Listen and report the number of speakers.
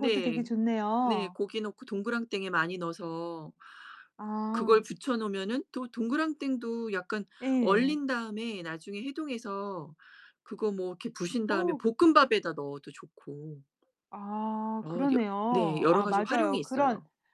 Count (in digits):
2